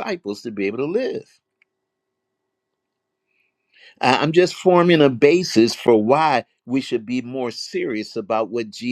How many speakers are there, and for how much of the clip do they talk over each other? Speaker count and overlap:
one, no overlap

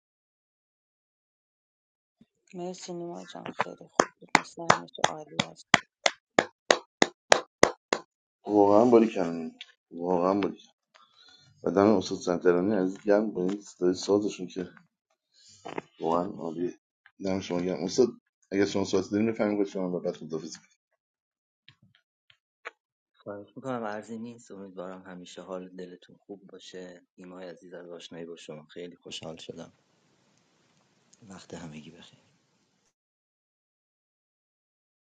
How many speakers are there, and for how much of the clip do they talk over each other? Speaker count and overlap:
three, no overlap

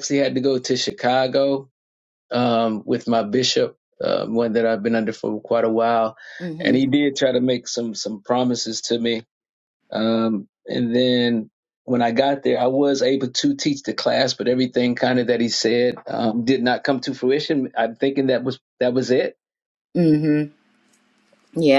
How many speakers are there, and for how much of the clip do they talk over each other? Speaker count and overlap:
two, about 1%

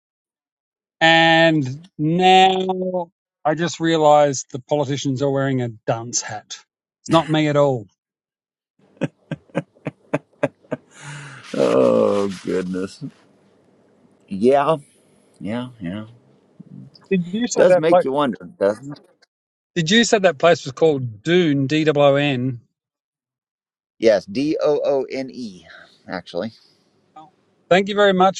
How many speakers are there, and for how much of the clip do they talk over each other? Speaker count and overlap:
two, about 2%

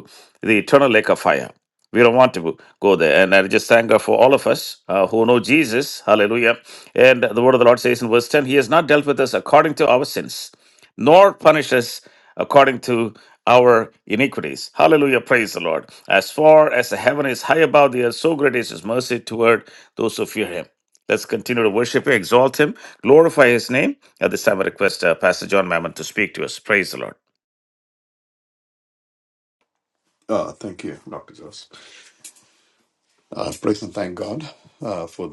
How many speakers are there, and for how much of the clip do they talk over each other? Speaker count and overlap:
two, no overlap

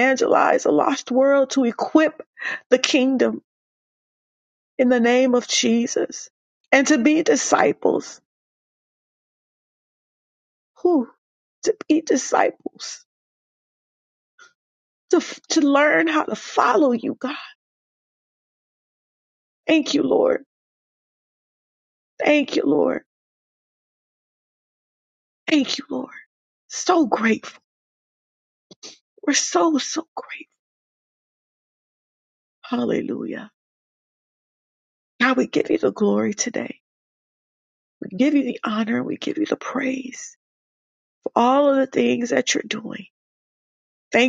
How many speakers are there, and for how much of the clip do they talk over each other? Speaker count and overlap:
one, no overlap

